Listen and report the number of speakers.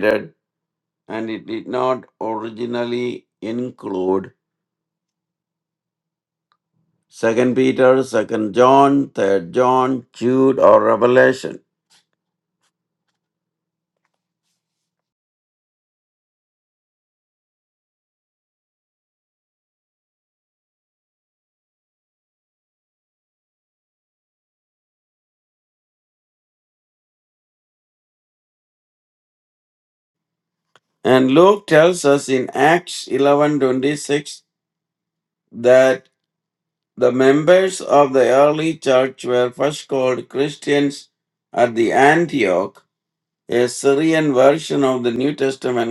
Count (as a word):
one